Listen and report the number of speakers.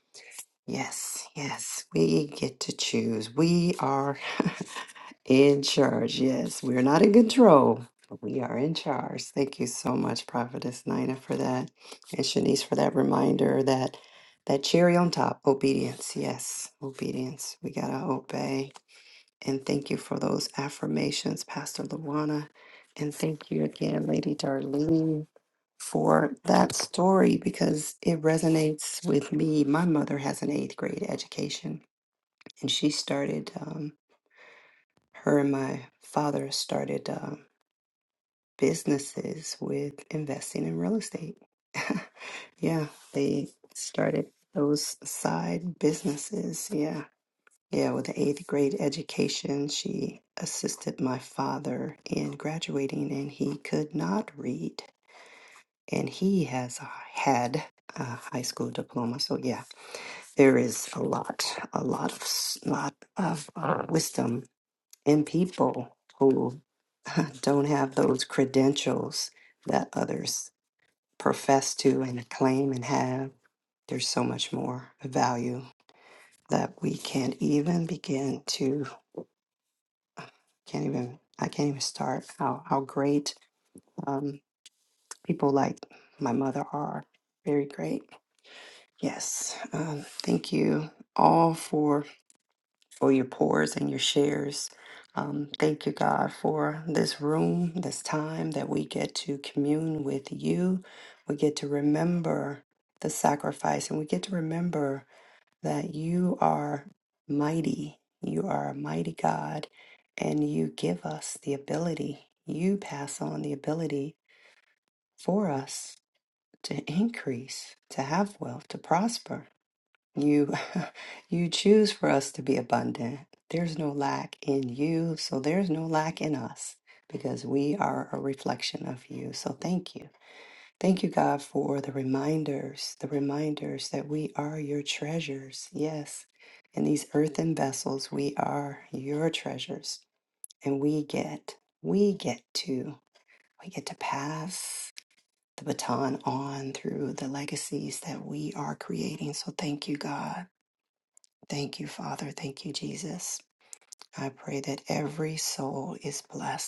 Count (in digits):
1